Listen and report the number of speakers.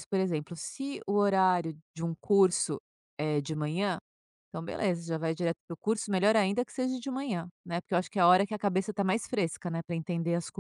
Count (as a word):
one